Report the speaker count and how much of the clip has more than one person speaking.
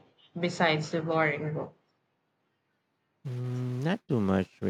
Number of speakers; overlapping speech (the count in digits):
2, no overlap